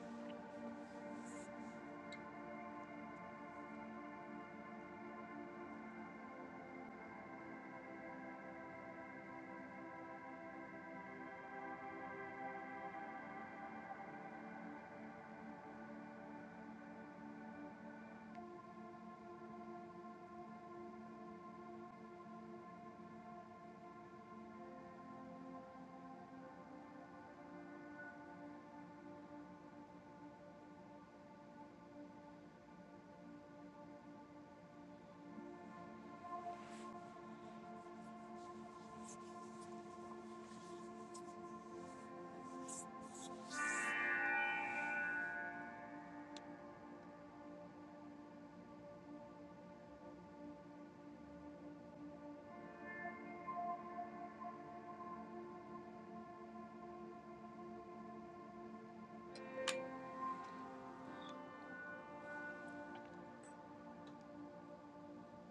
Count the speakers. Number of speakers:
0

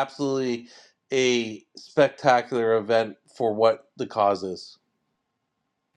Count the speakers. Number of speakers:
1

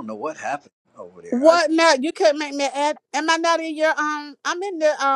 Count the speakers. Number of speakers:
2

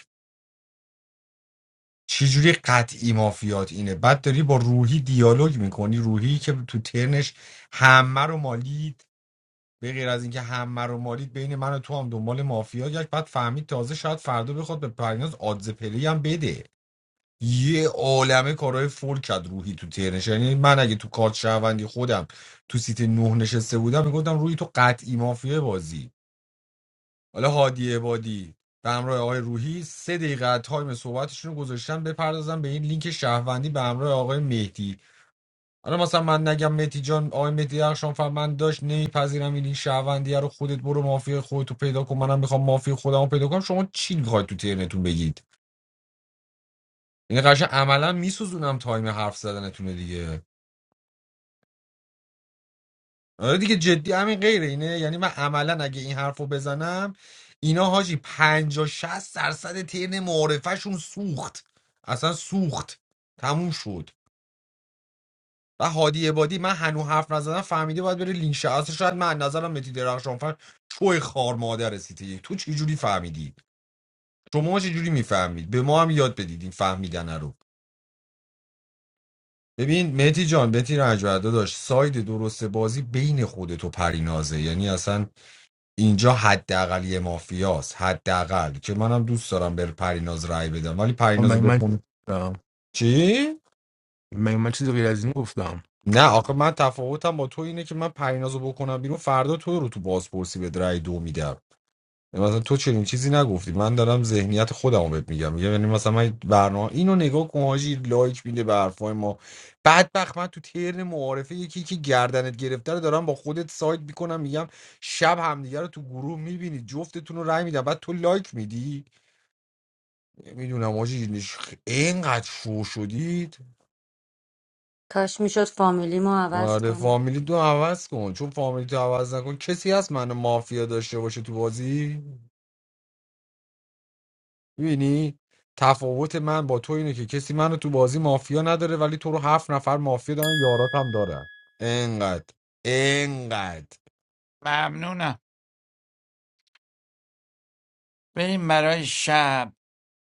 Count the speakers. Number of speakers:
4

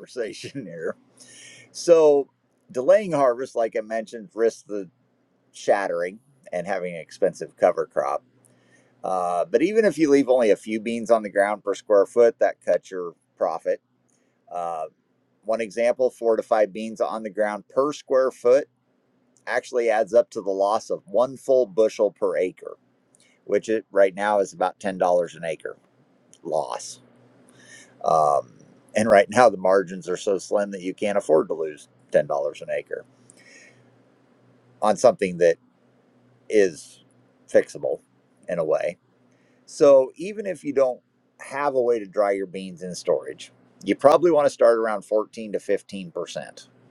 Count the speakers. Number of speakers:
1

